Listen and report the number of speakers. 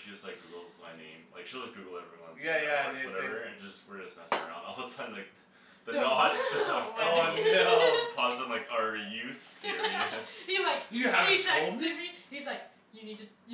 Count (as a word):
three